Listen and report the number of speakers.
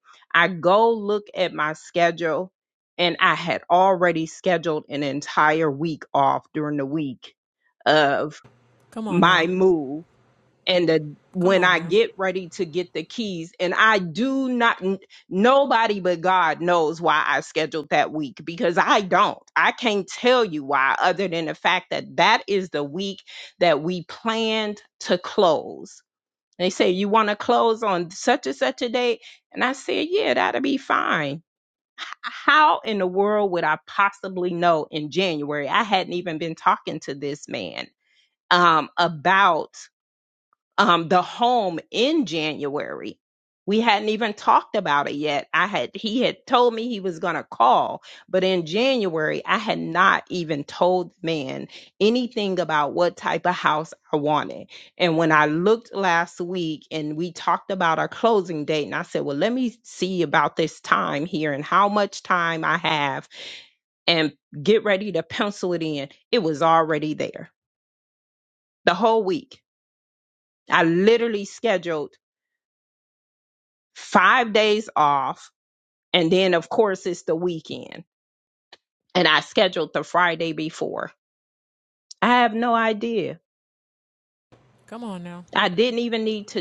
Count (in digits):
2